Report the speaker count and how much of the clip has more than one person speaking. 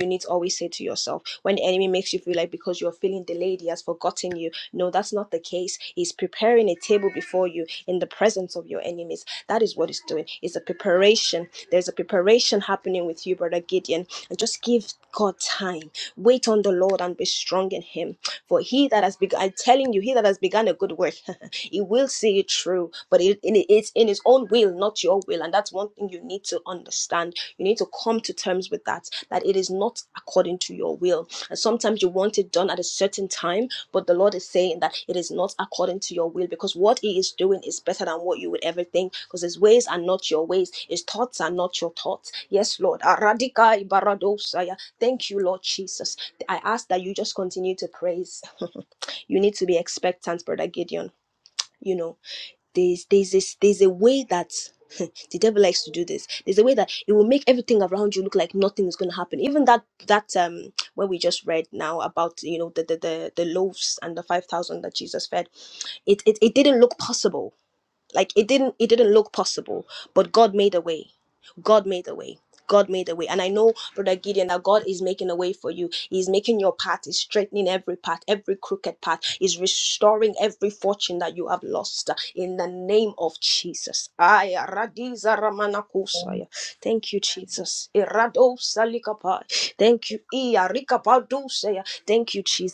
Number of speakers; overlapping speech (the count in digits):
1, no overlap